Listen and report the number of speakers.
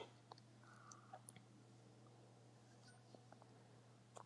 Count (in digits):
0